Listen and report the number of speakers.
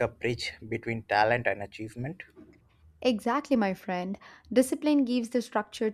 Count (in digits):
2